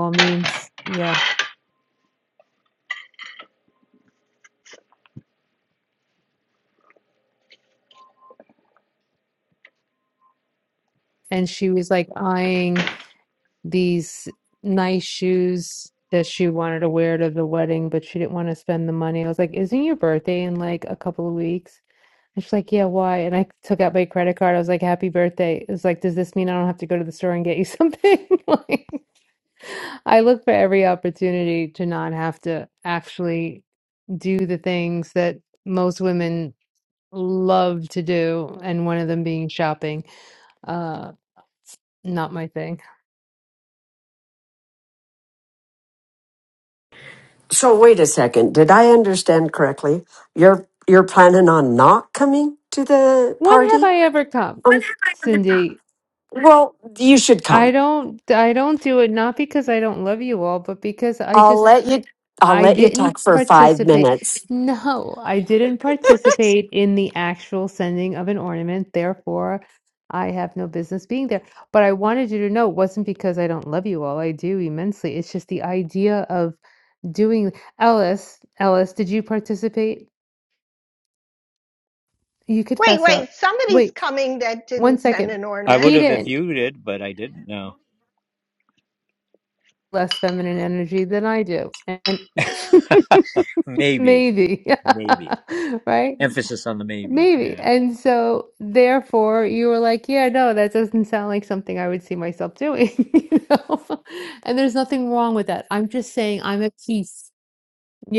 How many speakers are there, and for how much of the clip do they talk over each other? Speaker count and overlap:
4, about 5%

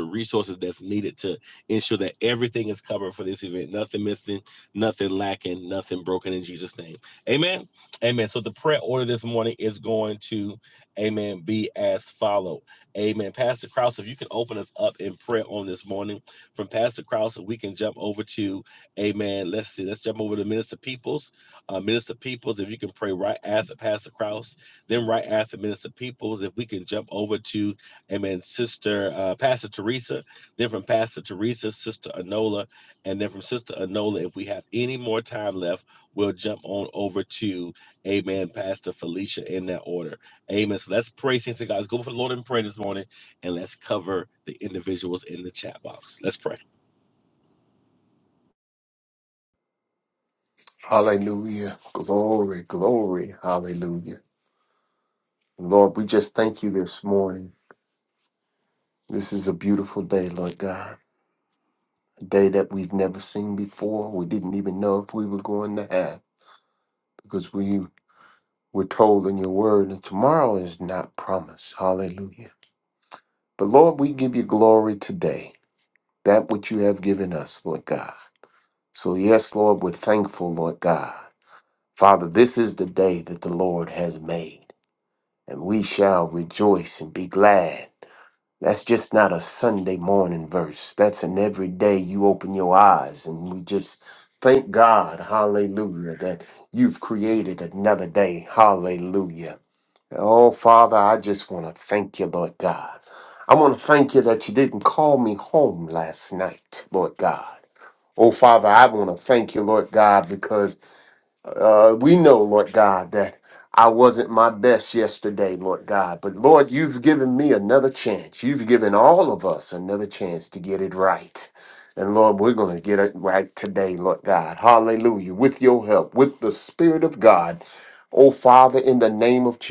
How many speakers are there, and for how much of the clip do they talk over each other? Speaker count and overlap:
2, no overlap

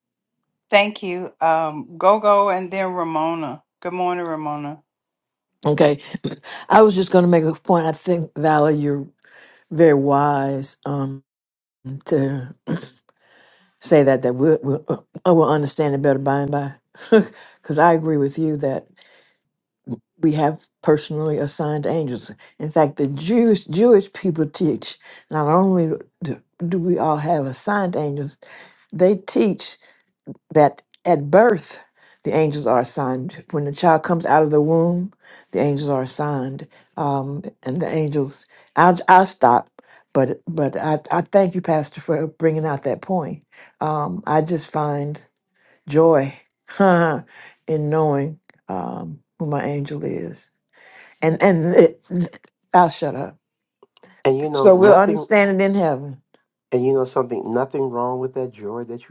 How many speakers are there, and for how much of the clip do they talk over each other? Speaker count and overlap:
3, about 1%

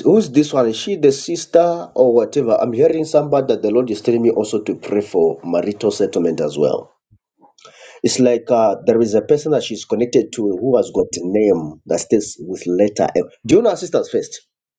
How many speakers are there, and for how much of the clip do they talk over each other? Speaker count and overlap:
1, no overlap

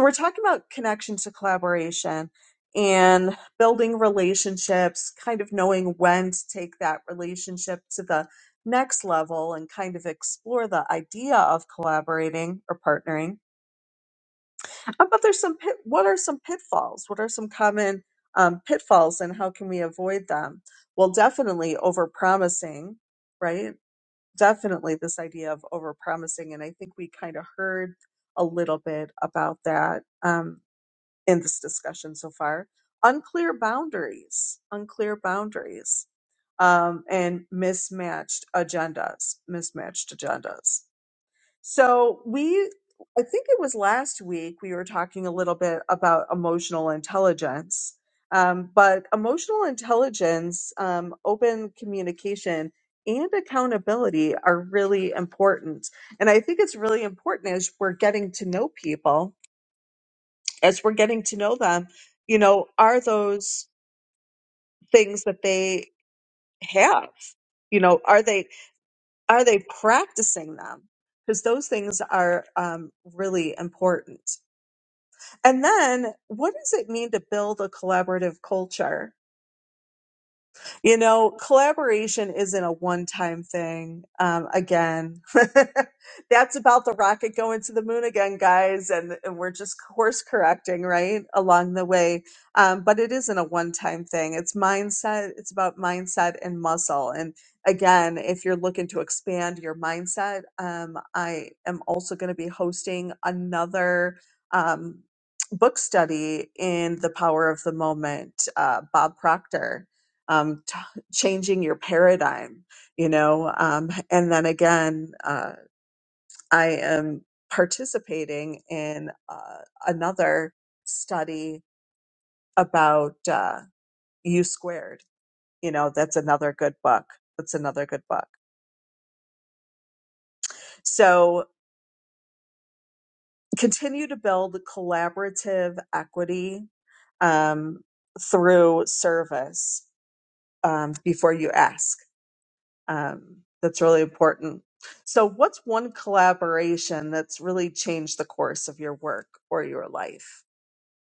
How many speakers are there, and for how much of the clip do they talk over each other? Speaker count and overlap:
1, no overlap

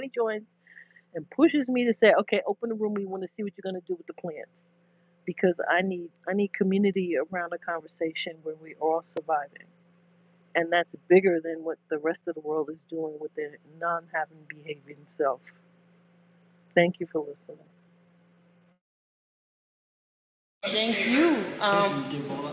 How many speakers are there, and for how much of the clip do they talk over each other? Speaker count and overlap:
2, no overlap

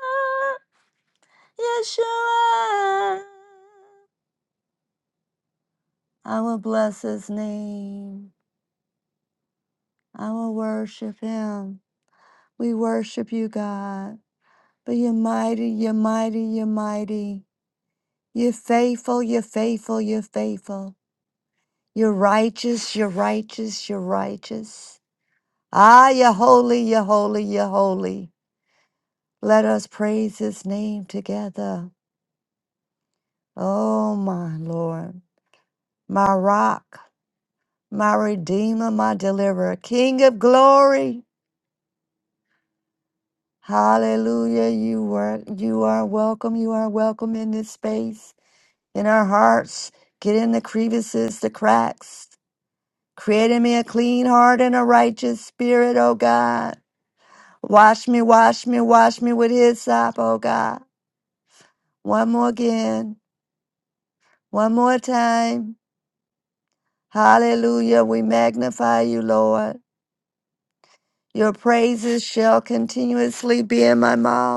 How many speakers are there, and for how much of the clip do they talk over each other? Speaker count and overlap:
1, no overlap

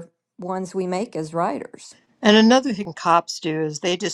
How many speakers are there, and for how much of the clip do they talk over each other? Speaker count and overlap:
2, no overlap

